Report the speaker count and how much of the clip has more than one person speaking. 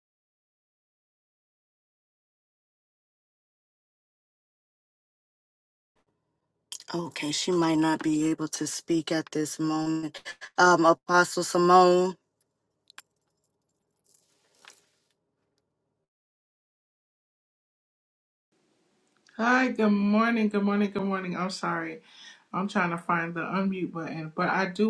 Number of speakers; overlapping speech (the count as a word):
two, no overlap